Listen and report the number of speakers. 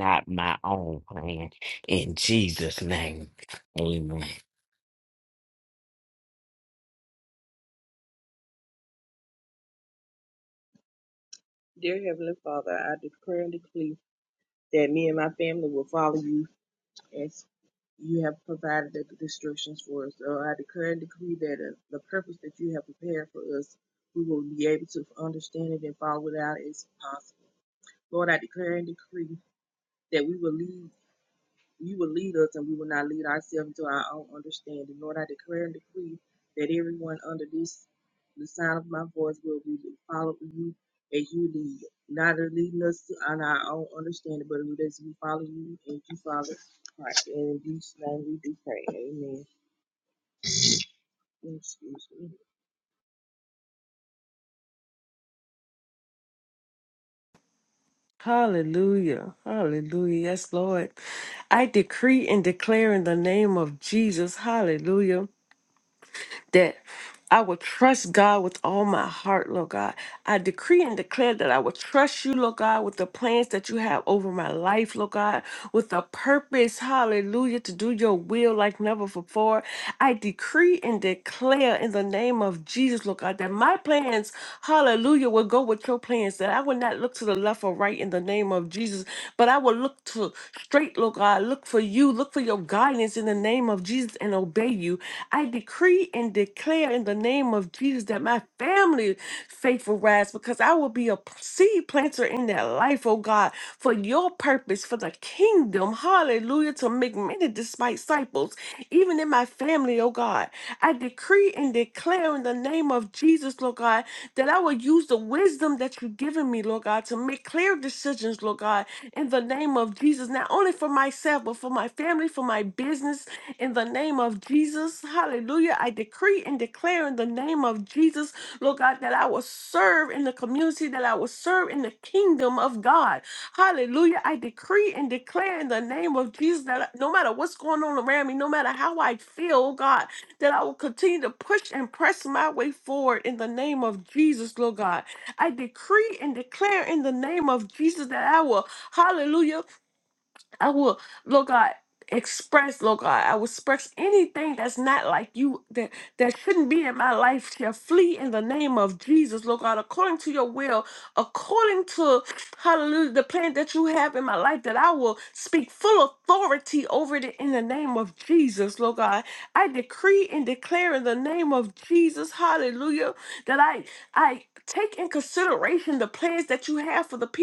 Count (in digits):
3